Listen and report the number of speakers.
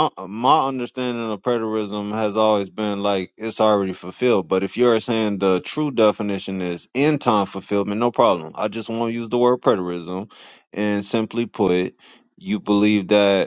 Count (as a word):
one